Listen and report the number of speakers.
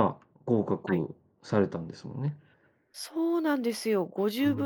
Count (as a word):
two